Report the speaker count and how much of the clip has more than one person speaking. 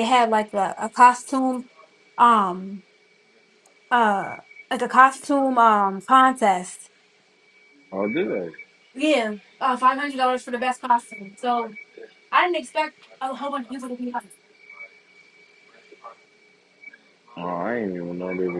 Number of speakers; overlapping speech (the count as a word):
two, no overlap